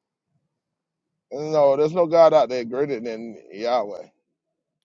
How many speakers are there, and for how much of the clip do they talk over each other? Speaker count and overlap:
1, no overlap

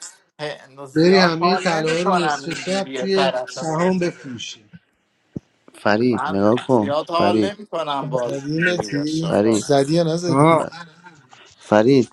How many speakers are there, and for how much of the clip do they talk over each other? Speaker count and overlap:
4, about 48%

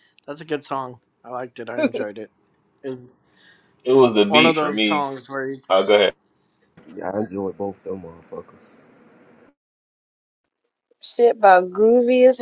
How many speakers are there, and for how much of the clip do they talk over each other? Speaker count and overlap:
4, about 6%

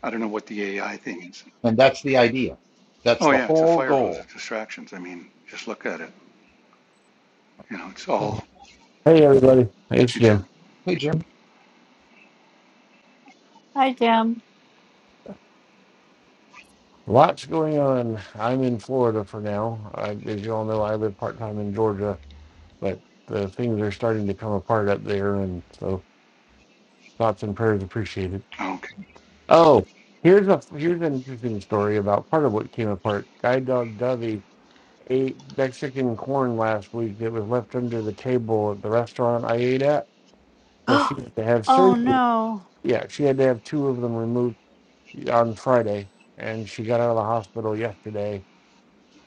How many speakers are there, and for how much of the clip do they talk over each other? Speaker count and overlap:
4, about 4%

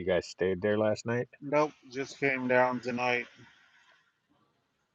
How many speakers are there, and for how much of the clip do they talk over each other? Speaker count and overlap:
2, no overlap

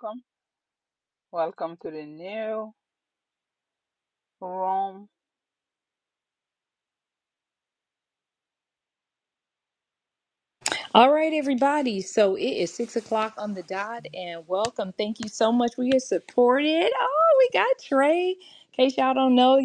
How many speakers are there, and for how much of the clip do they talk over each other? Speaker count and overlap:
2, no overlap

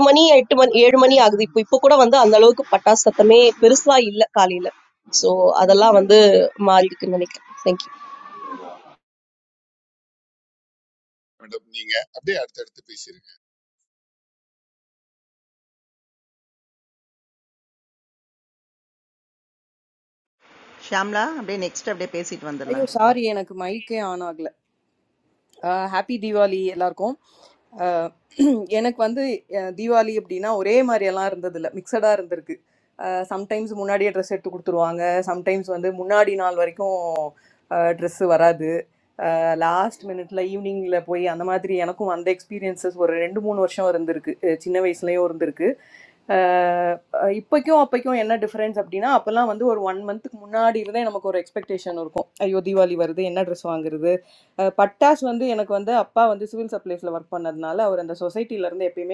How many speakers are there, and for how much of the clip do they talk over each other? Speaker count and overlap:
4, under 1%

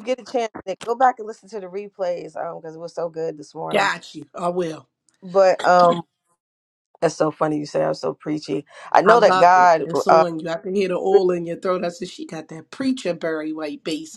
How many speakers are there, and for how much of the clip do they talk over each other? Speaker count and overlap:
2, about 10%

